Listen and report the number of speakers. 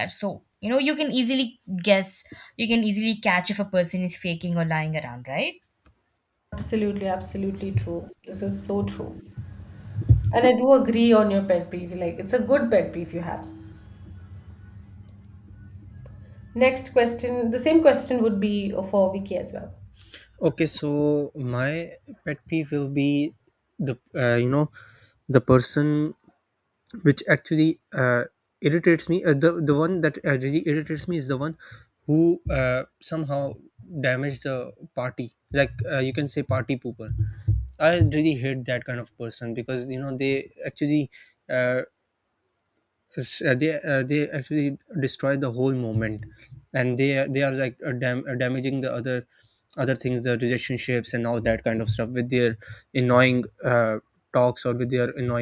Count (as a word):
three